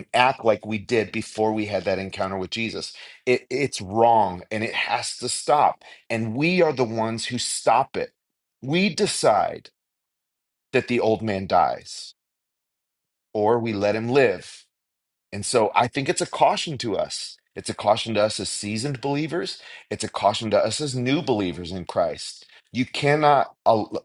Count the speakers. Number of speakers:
one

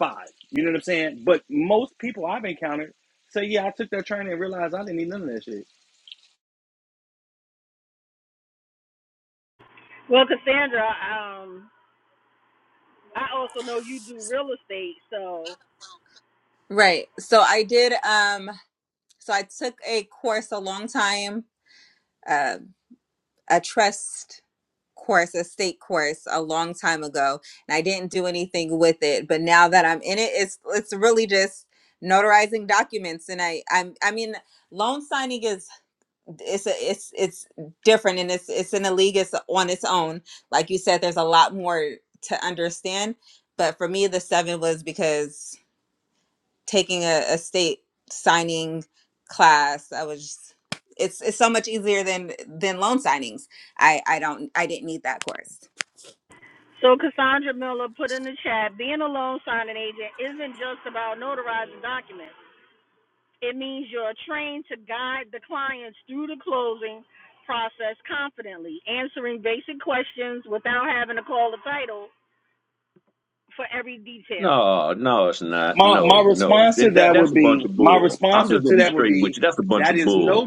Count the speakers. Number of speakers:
four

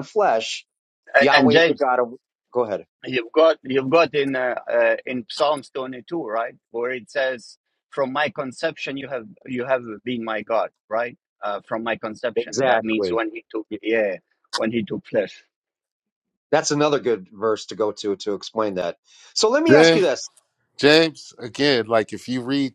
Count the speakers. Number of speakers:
three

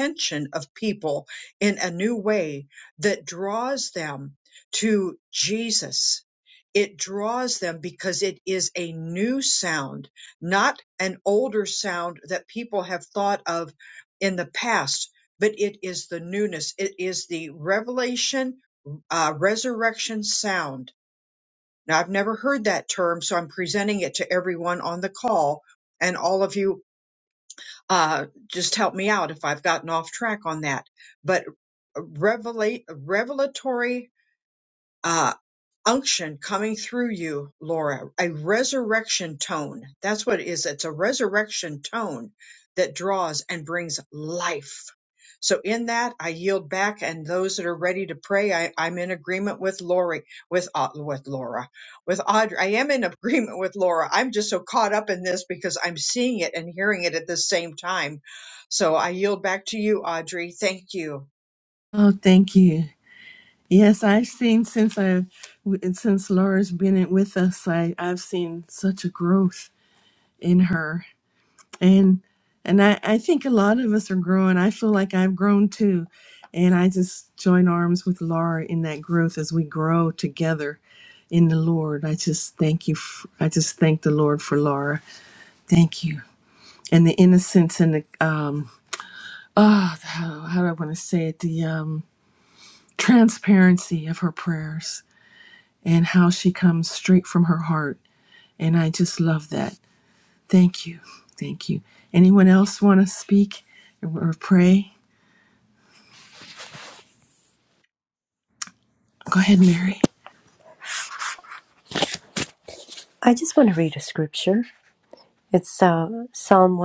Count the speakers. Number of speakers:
three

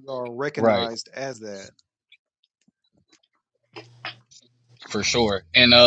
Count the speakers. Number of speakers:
two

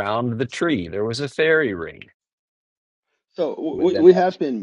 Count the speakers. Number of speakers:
two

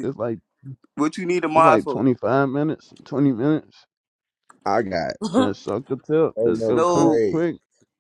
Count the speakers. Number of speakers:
three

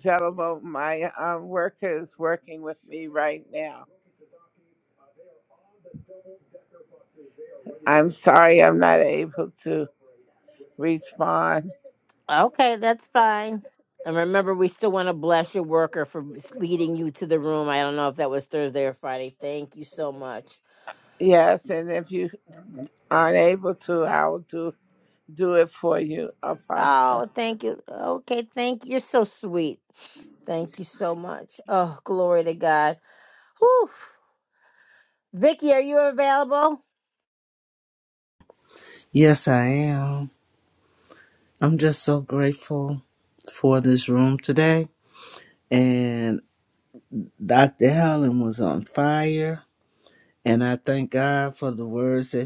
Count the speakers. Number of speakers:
three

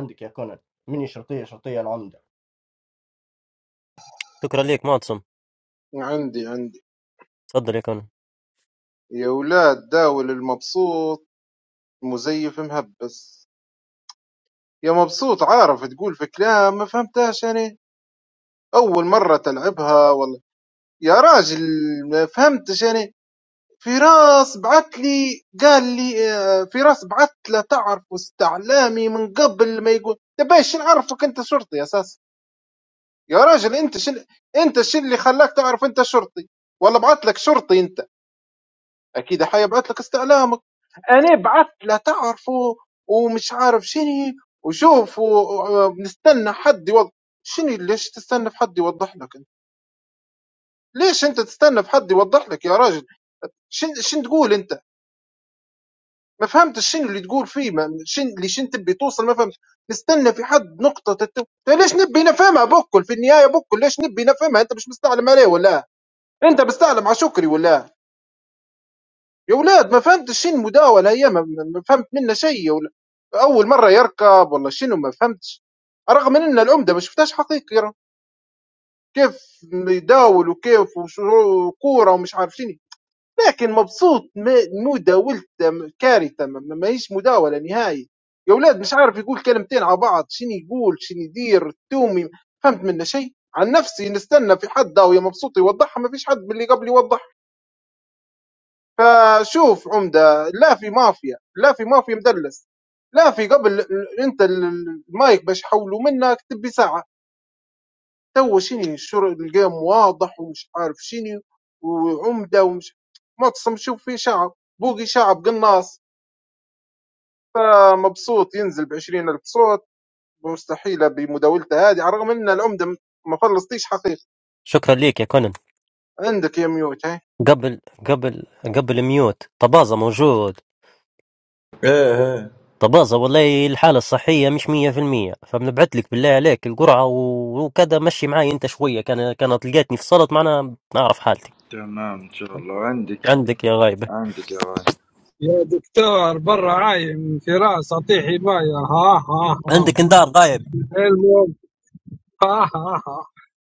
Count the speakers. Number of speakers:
five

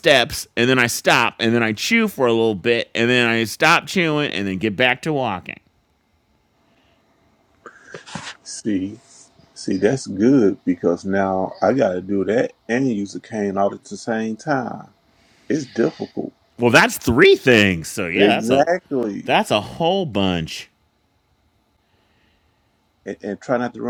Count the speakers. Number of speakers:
two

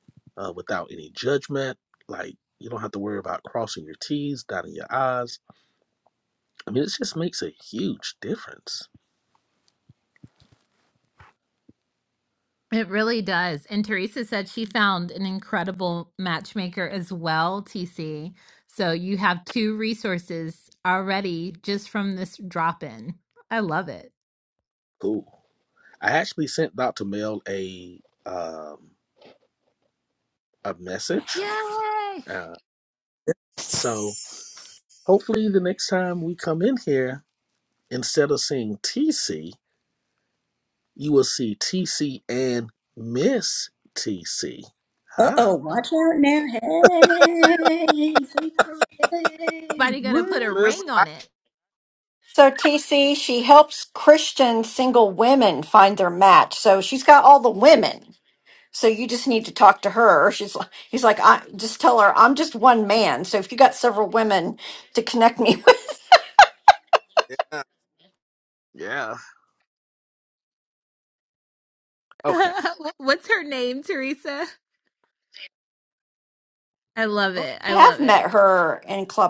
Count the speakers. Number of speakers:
four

